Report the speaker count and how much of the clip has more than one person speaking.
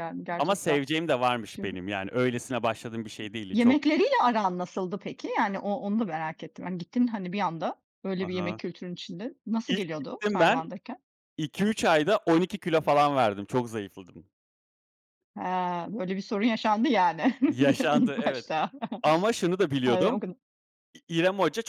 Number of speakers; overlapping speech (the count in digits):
2, about 14%